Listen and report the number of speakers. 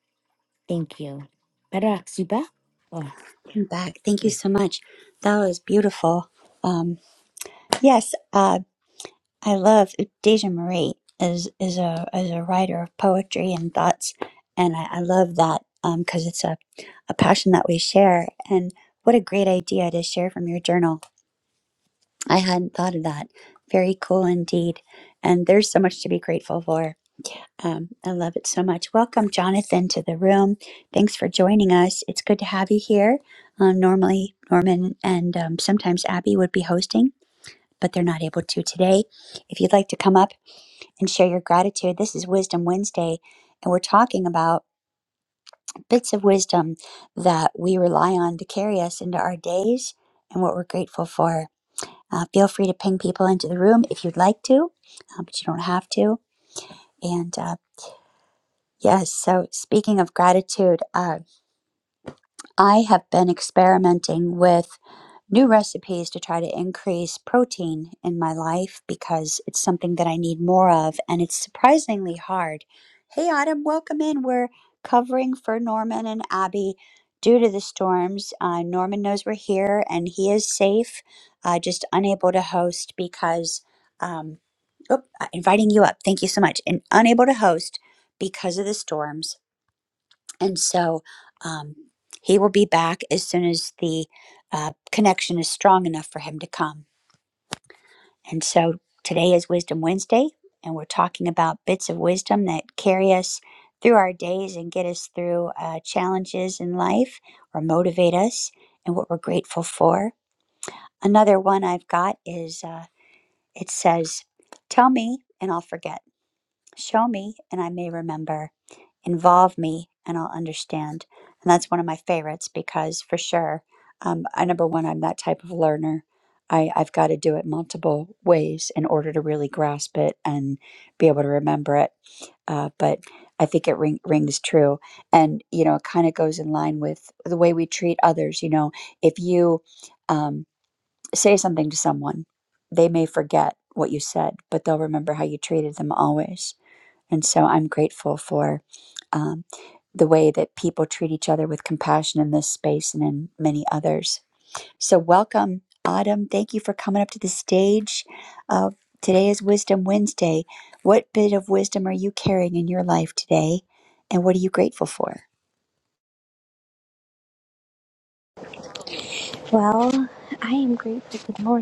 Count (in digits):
3